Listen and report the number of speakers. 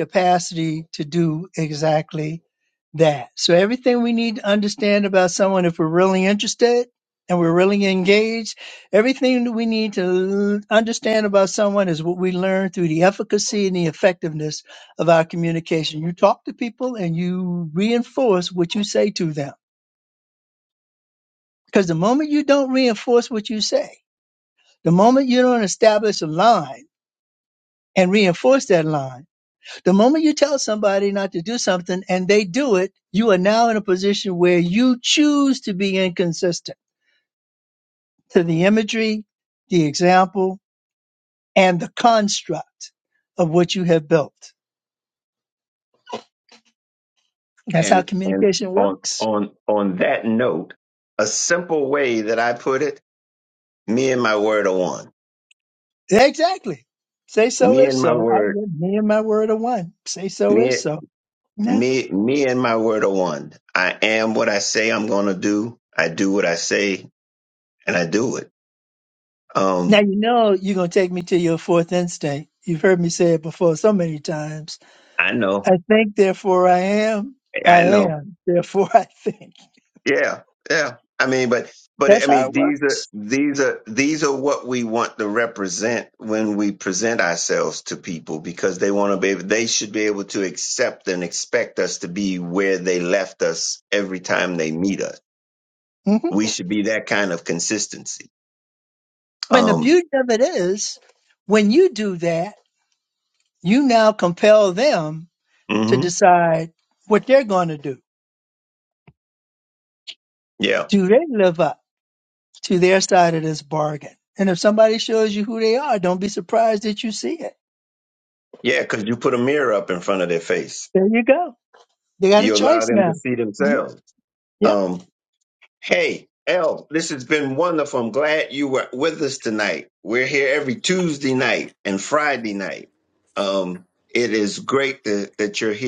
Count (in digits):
2